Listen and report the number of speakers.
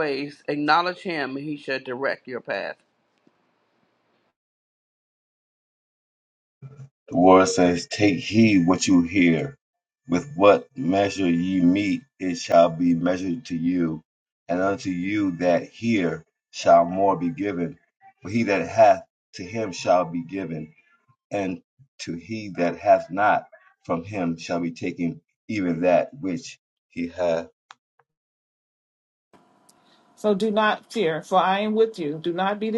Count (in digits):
3